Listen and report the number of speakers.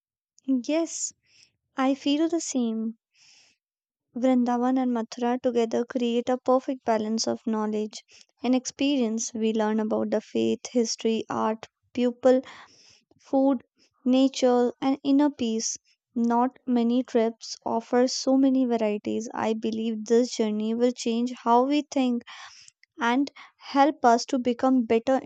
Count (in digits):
1